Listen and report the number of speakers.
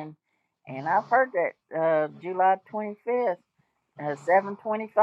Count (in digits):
1